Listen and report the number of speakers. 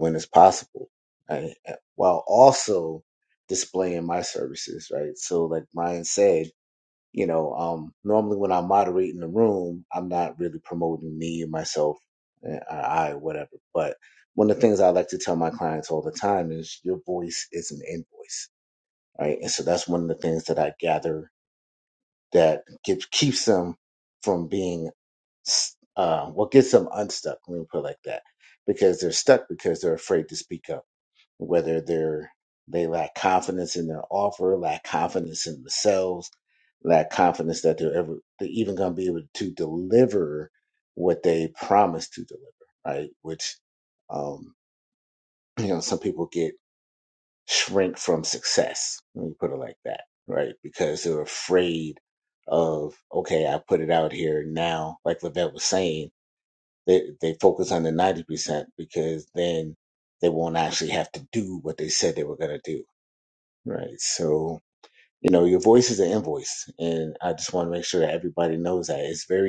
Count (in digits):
1